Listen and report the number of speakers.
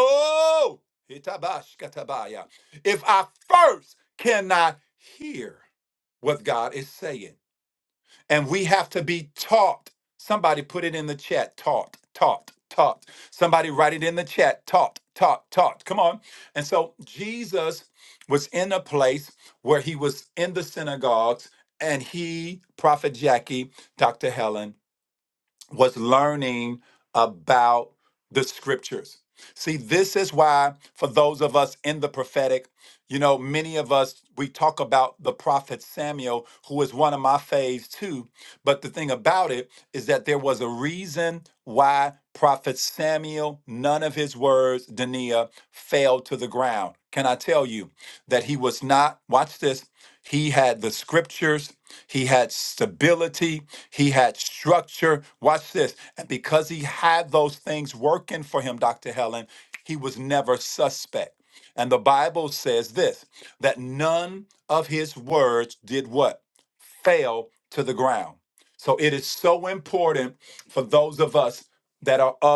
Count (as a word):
one